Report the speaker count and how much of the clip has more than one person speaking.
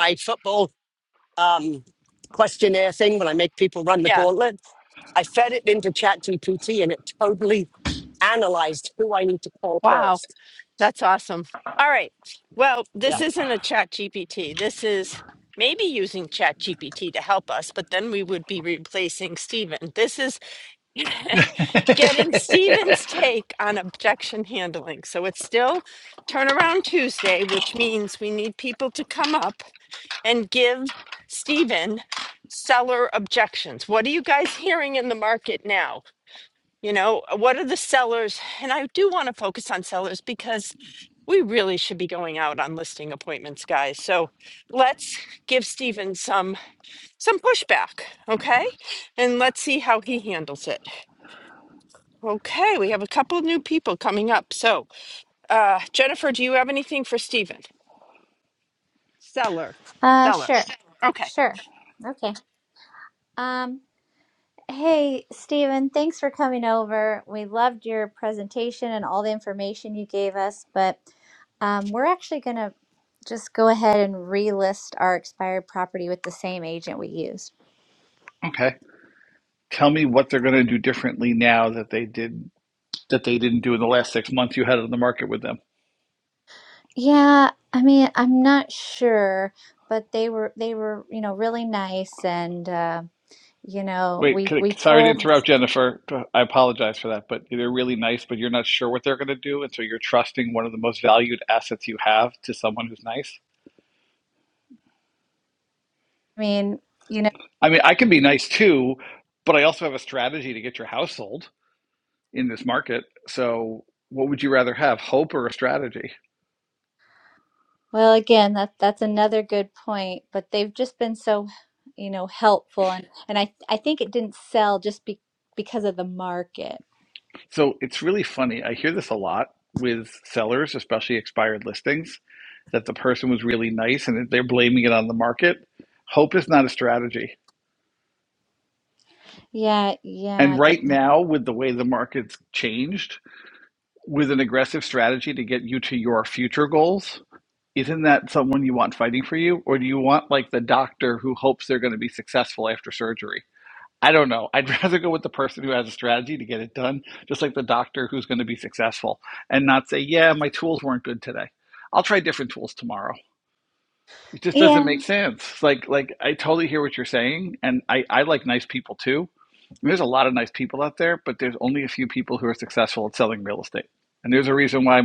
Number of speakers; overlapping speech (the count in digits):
4, about 2%